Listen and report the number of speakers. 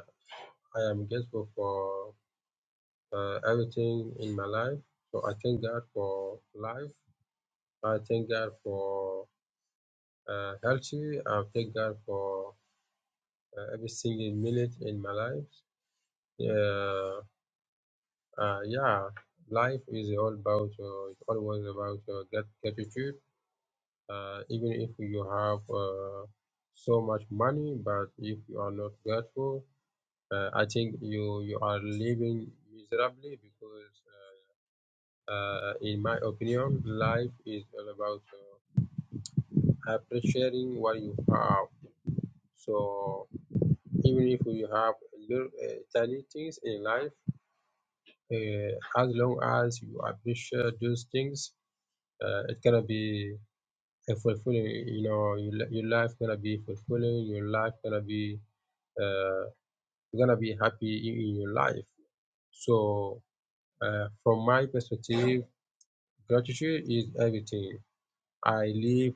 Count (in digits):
1